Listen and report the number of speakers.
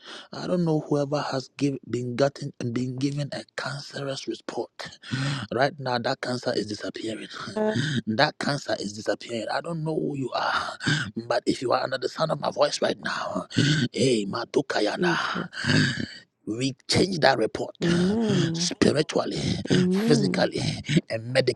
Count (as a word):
two